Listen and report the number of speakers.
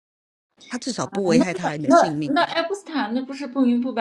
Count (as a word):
two